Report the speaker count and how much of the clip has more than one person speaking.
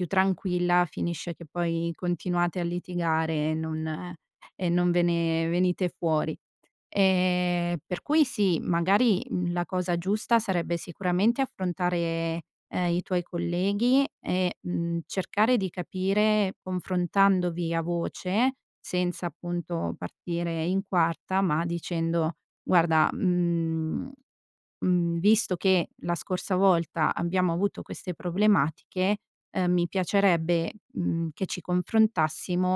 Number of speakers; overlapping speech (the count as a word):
one, no overlap